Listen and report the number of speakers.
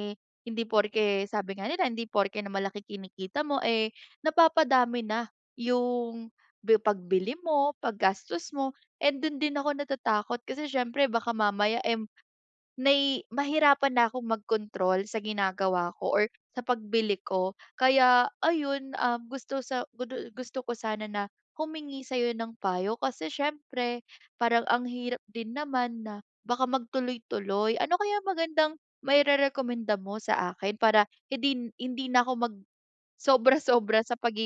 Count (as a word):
one